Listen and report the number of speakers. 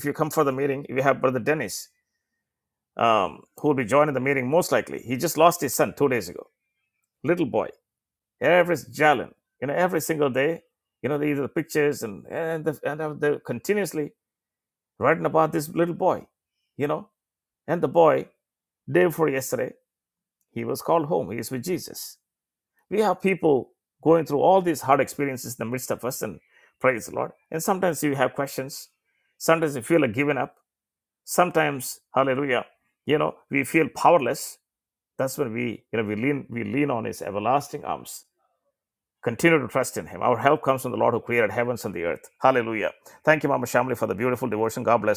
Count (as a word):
one